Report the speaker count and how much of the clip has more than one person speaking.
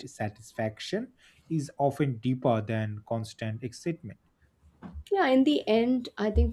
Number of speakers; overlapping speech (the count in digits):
2, no overlap